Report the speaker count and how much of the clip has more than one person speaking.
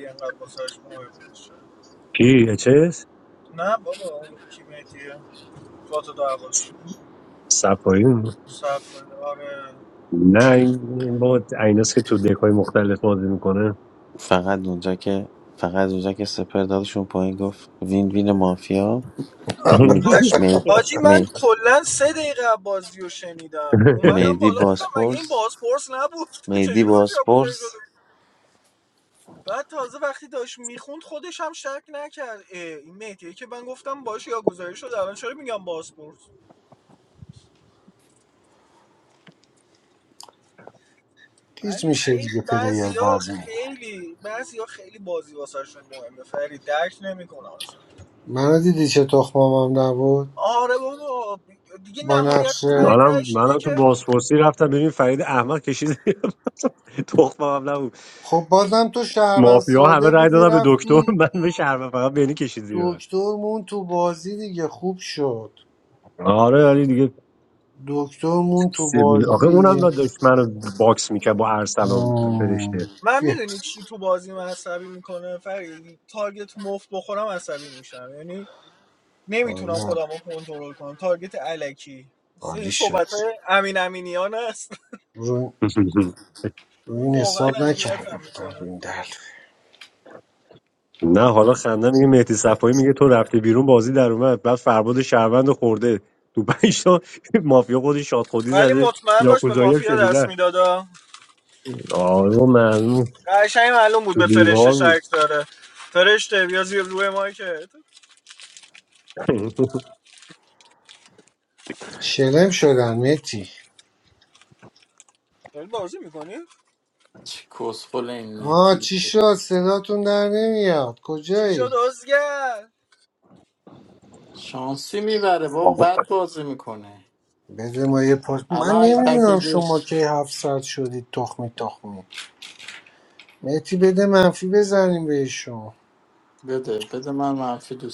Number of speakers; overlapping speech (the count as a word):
five, about 13%